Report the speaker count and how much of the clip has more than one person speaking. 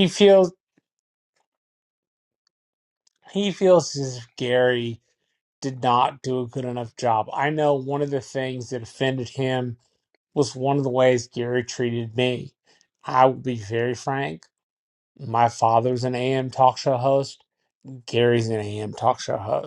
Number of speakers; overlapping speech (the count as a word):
one, no overlap